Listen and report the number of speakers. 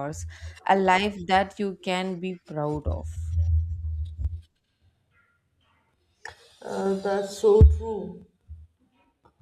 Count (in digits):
2